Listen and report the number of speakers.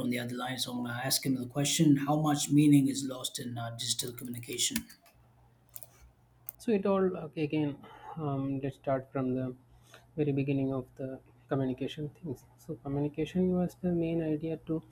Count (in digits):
2